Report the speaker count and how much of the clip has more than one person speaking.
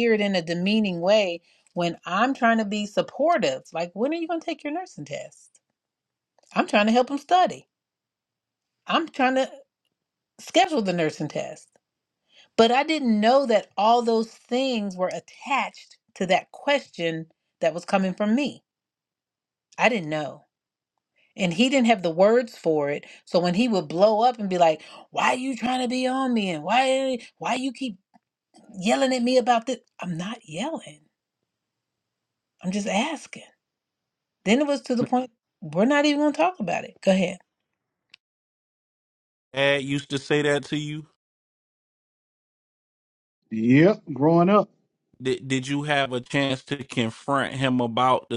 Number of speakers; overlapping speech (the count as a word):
three, no overlap